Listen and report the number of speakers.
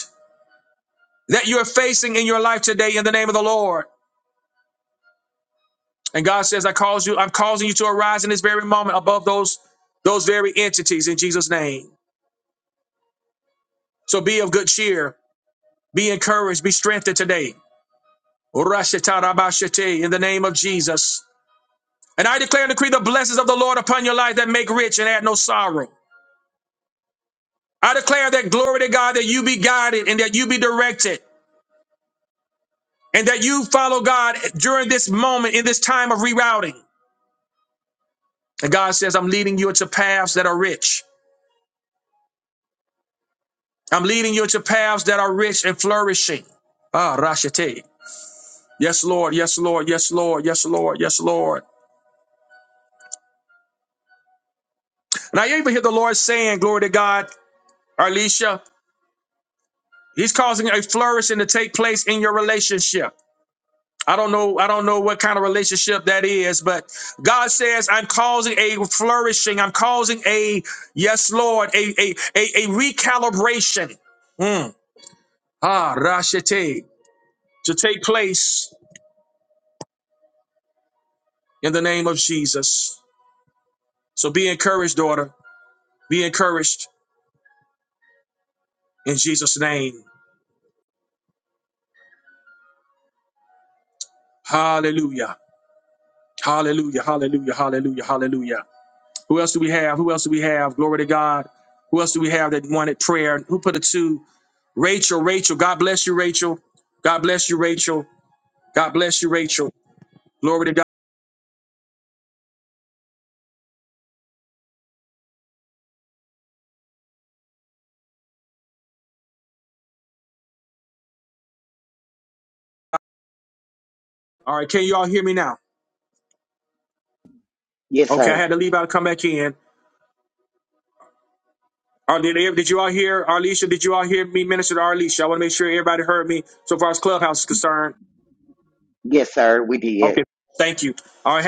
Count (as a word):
two